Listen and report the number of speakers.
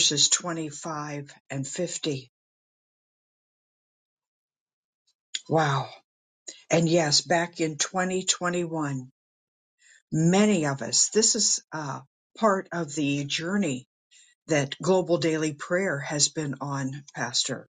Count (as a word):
one